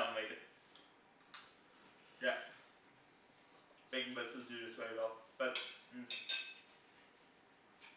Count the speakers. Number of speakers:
one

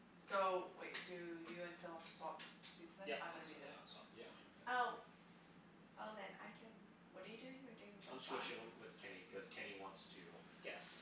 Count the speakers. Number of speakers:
four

